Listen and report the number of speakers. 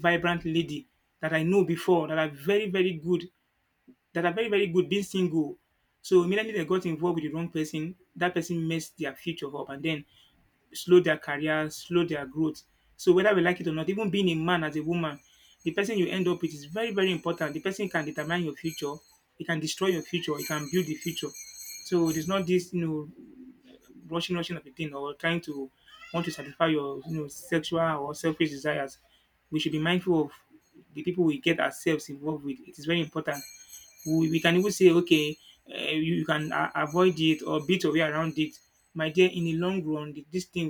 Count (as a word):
one